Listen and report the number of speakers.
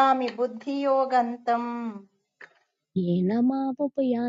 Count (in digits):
2